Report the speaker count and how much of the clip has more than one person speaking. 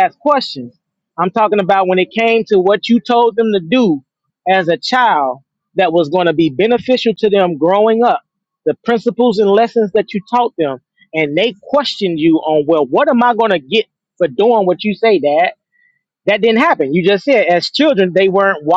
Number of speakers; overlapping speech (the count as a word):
one, no overlap